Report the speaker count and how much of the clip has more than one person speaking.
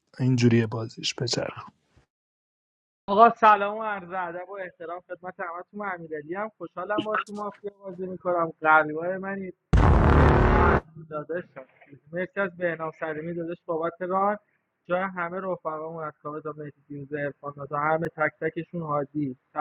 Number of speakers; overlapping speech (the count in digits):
2, no overlap